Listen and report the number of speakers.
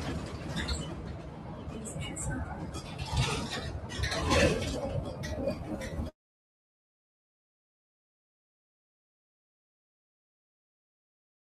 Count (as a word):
zero